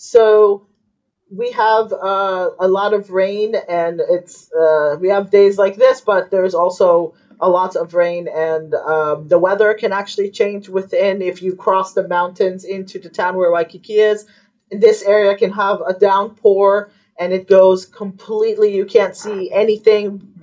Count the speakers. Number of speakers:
one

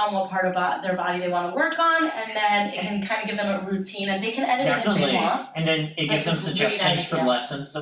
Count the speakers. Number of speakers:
two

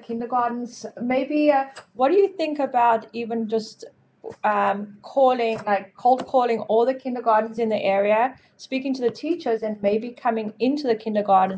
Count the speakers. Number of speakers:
one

